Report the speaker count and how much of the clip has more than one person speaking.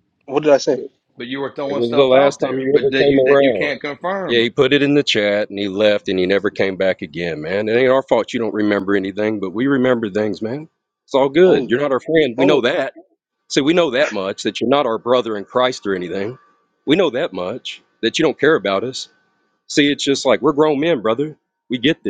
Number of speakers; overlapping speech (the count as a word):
three, about 13%